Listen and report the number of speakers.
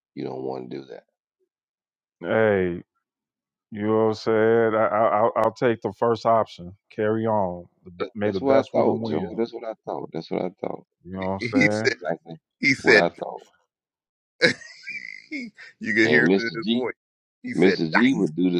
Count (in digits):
3